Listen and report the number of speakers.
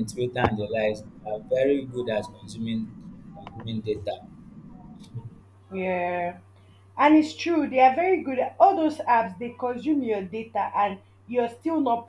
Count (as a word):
two